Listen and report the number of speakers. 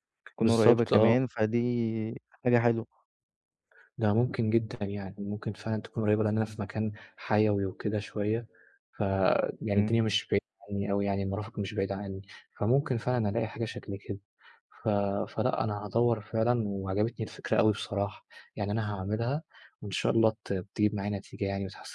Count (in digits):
2